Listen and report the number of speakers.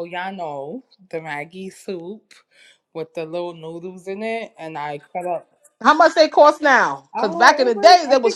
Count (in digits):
2